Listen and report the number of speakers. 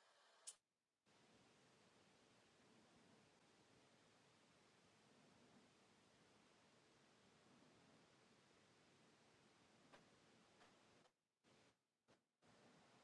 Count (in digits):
0